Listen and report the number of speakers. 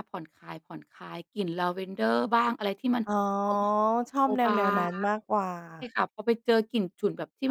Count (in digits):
2